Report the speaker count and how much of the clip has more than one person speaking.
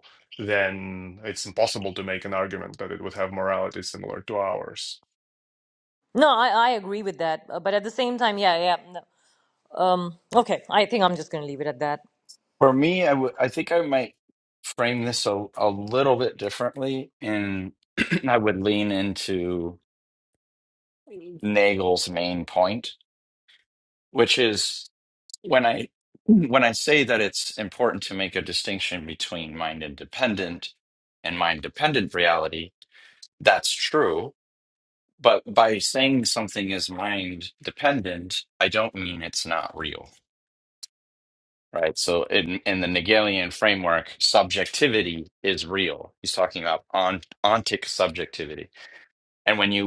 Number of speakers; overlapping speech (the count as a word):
three, no overlap